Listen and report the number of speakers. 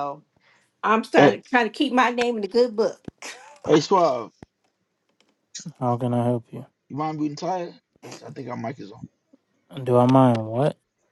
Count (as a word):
three